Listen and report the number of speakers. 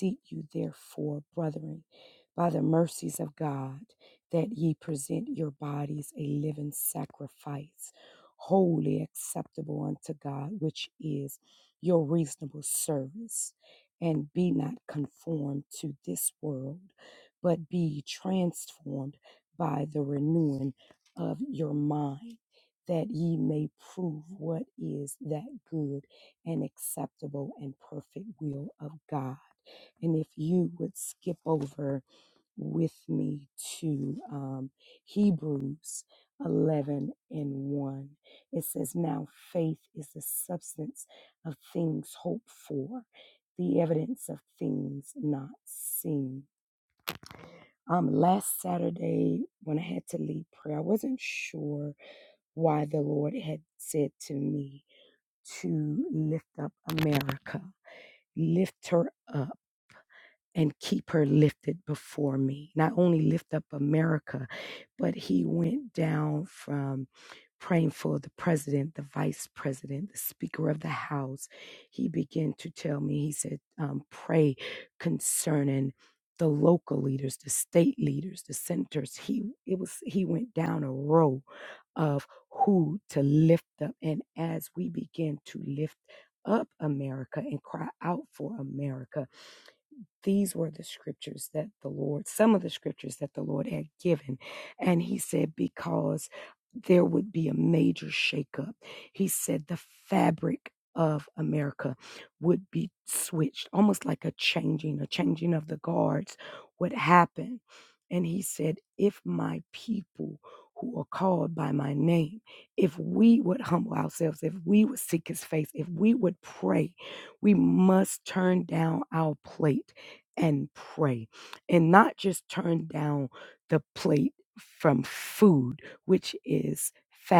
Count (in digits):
1